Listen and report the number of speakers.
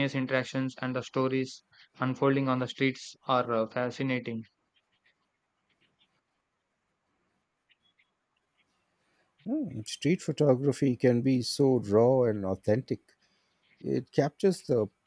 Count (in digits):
2